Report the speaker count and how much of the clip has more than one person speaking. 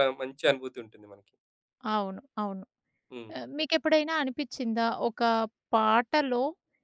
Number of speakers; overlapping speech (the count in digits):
2, no overlap